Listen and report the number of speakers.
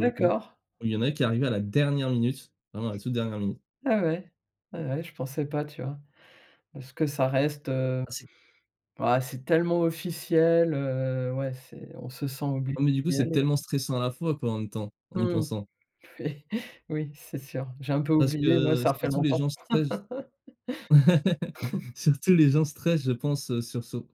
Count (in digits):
2